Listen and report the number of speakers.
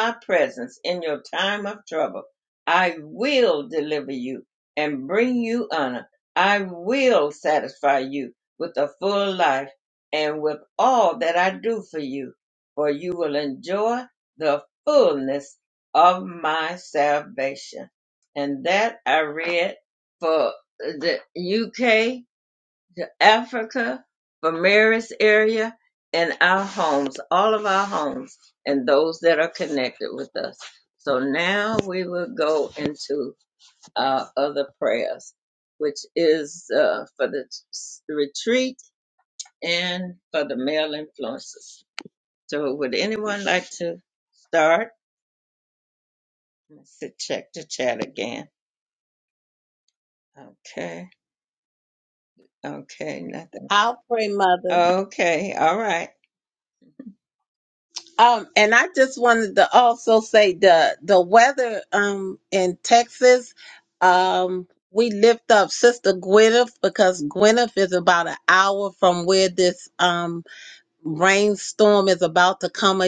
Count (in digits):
2